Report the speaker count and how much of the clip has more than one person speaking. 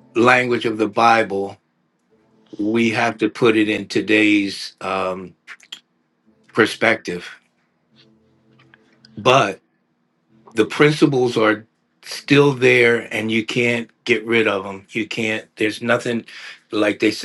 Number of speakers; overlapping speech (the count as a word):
one, no overlap